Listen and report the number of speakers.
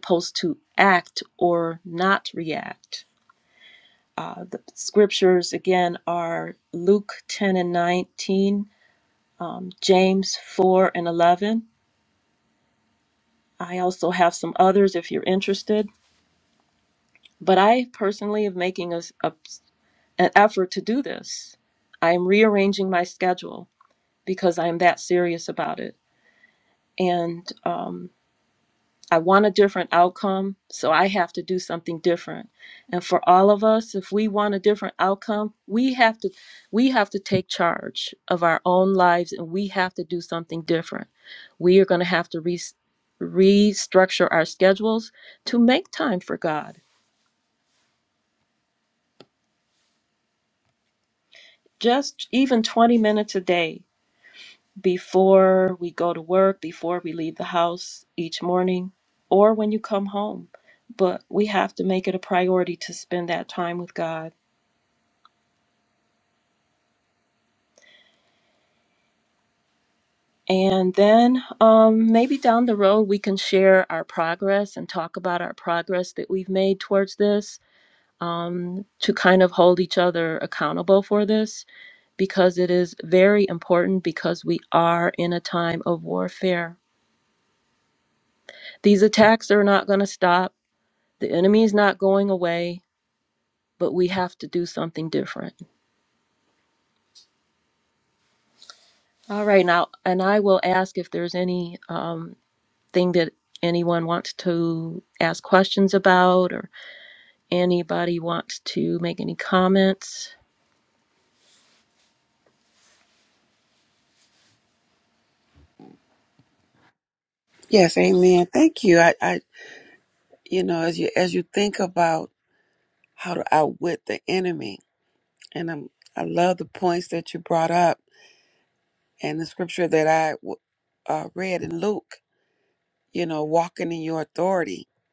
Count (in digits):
2